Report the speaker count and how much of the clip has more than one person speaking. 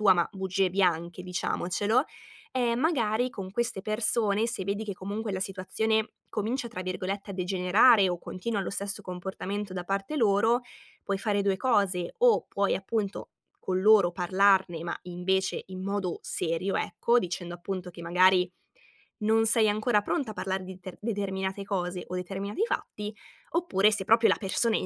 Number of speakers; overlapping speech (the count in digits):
1, no overlap